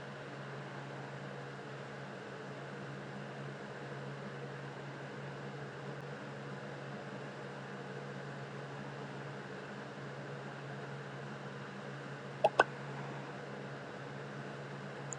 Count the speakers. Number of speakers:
zero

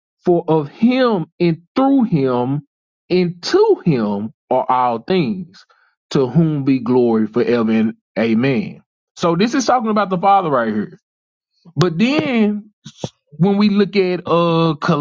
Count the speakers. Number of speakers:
one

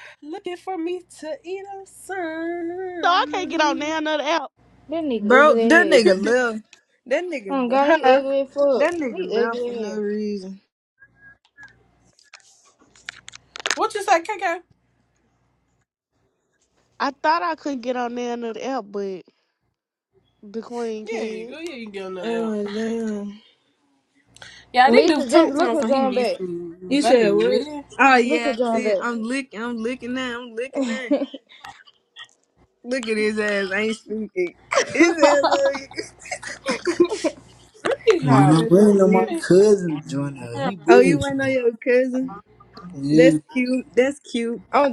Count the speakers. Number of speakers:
five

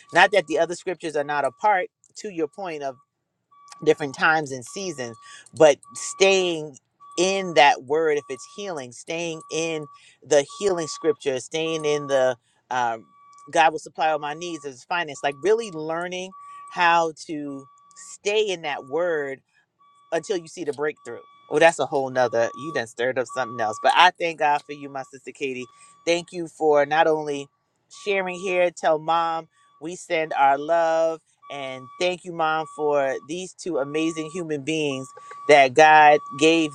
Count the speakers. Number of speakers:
one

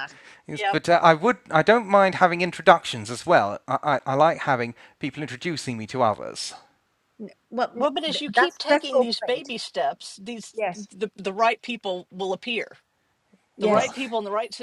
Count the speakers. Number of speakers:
three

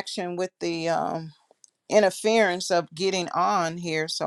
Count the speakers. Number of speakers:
one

